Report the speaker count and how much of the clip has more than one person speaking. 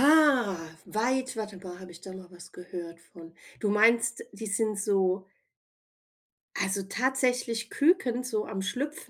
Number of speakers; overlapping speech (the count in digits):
1, no overlap